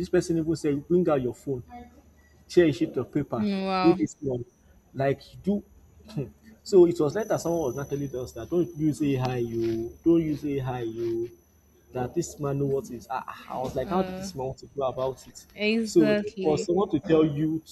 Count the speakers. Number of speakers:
two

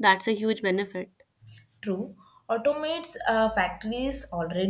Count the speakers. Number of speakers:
two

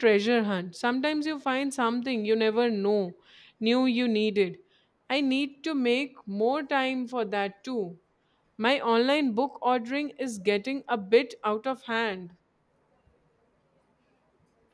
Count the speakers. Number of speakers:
one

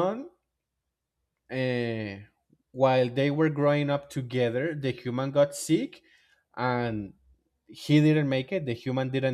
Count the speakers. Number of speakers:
one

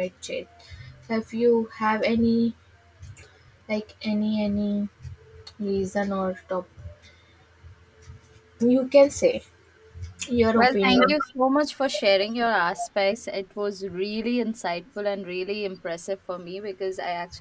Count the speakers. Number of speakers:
two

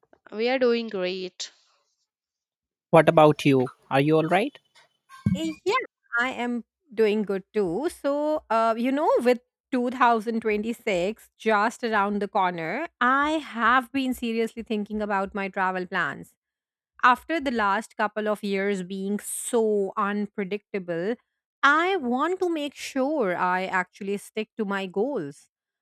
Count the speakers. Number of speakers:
three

